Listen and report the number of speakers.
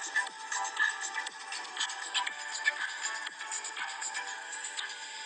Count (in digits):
0